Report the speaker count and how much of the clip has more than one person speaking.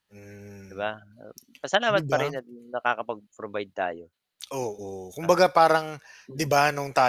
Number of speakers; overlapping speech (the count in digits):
2, about 10%